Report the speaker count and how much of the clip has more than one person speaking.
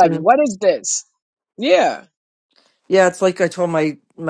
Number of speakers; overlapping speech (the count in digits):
2, about 6%